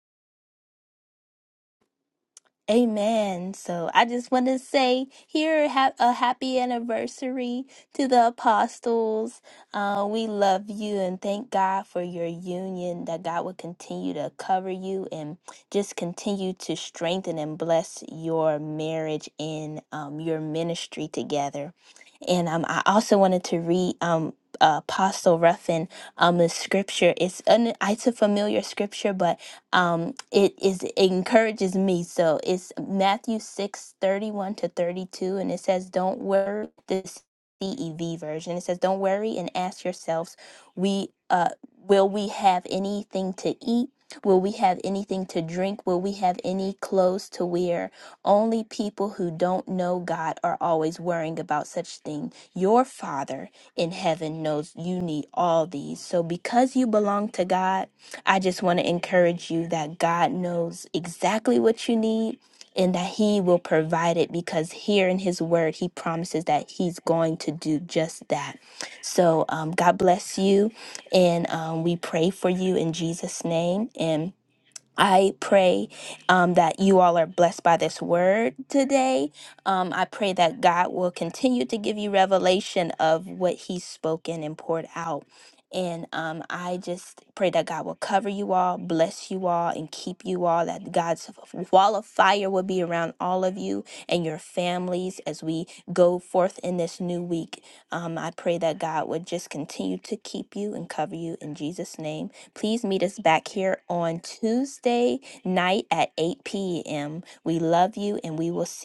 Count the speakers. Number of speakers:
one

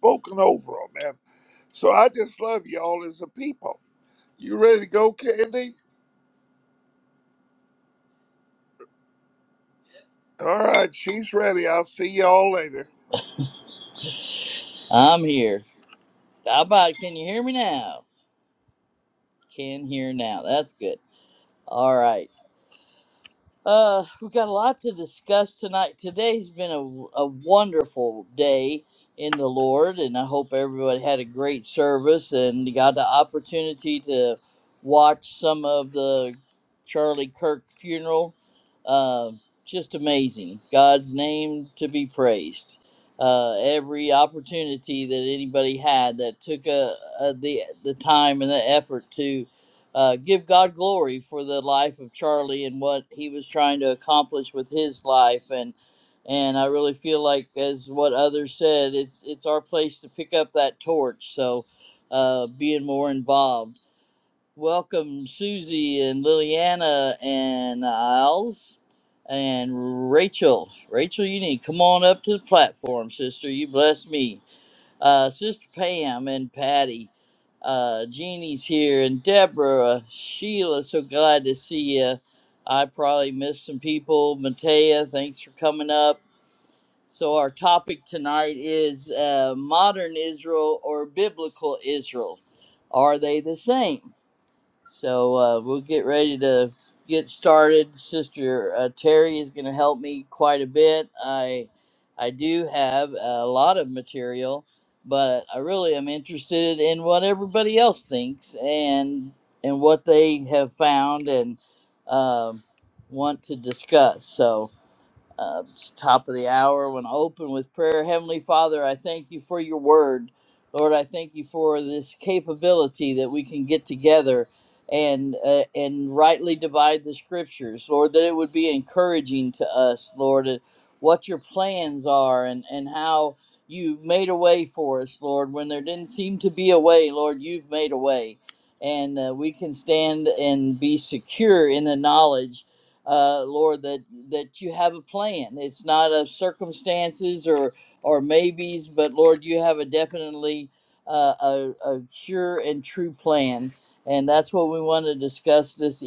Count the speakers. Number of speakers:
two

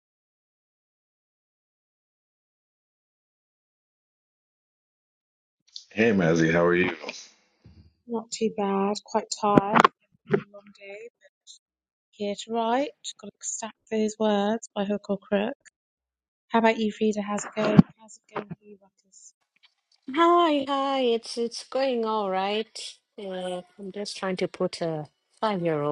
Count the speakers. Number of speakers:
three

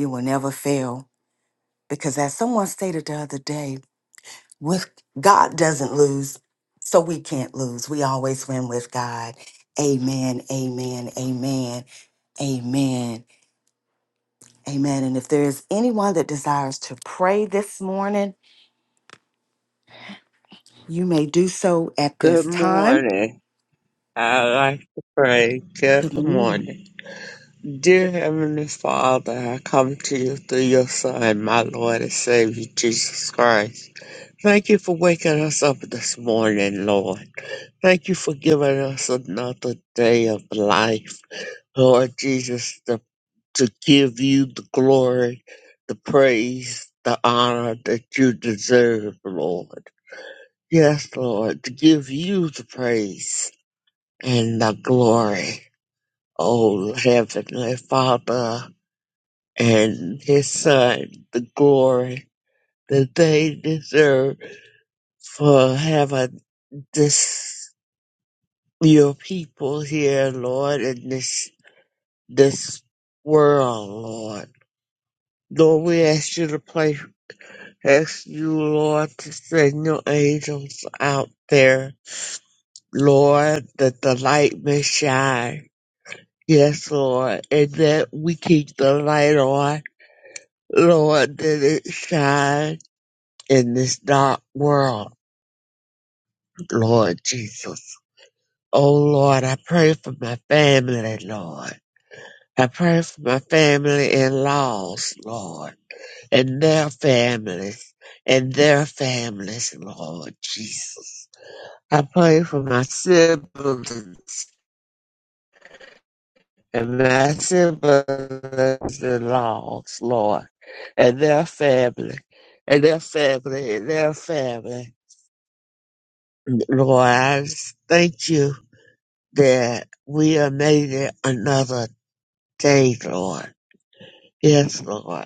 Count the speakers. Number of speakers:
two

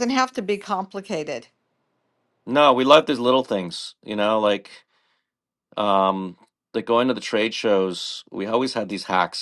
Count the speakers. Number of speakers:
two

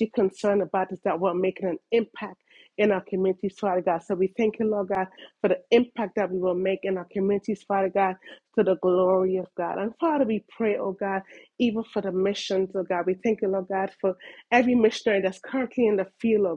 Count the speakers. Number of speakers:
one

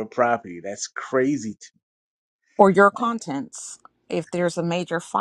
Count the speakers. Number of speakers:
two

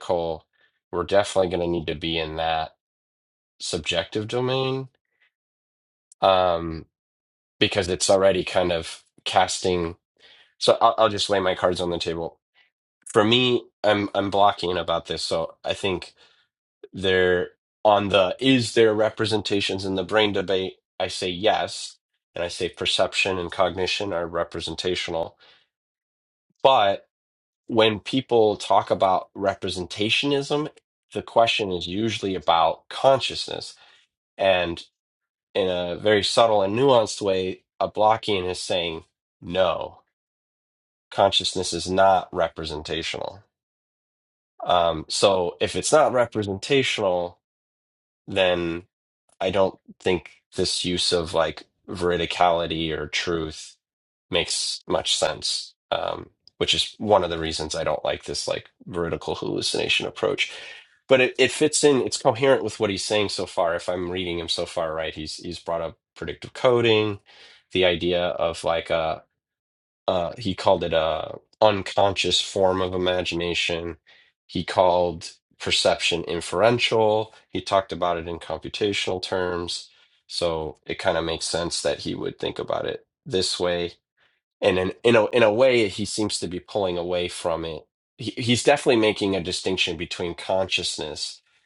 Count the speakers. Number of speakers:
one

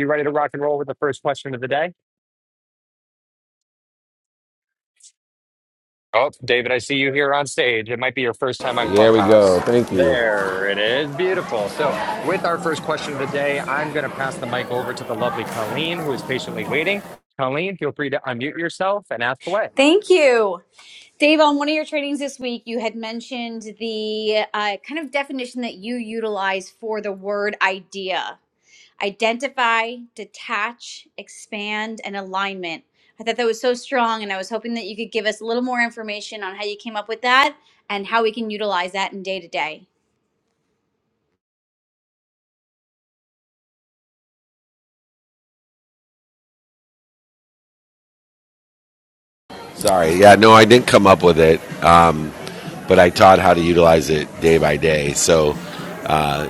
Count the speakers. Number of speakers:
three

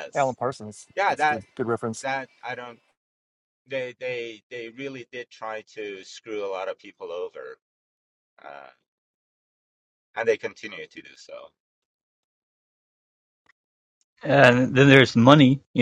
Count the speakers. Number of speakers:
three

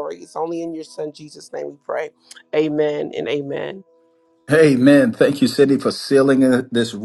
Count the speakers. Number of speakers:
two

